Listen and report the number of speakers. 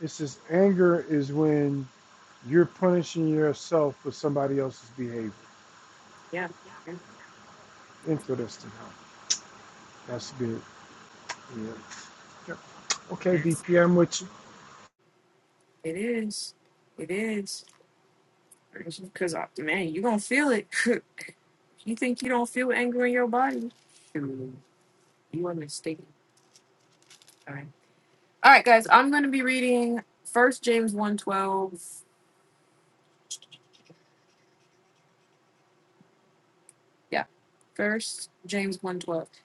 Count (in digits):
2